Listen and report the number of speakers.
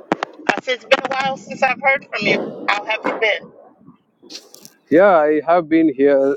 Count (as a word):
two